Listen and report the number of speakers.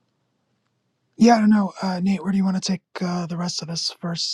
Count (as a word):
one